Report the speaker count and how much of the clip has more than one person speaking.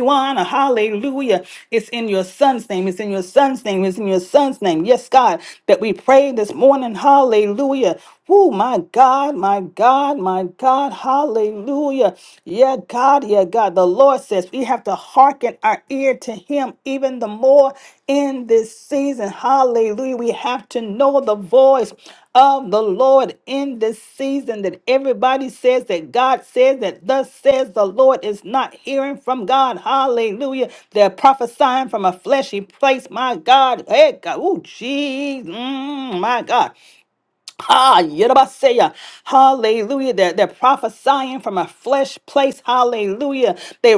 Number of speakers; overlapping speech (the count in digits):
1, no overlap